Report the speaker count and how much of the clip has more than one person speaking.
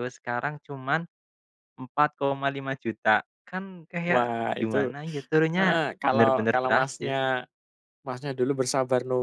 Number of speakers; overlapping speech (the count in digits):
2, about 18%